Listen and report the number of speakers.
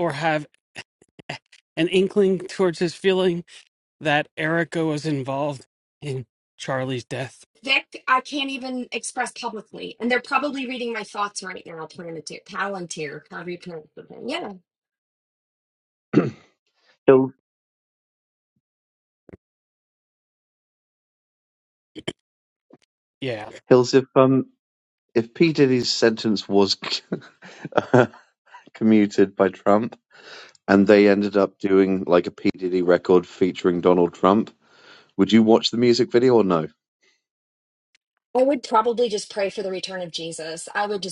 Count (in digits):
3